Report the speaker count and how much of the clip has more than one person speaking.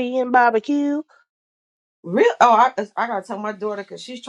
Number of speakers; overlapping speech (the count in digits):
2, no overlap